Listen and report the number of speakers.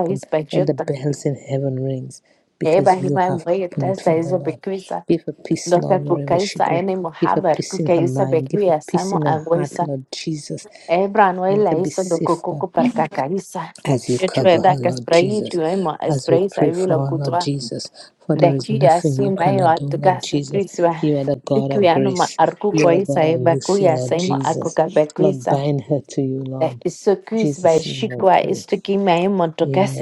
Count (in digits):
2